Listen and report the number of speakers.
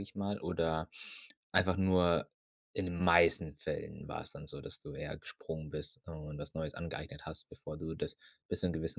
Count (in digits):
1